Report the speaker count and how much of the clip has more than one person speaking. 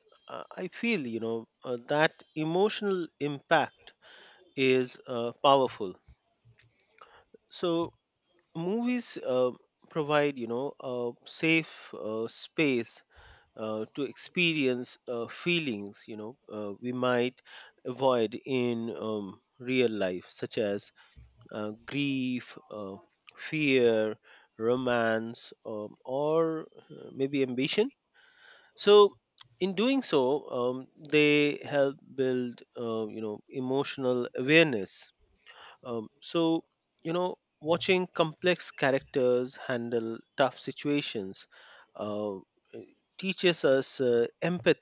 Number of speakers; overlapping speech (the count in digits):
1, no overlap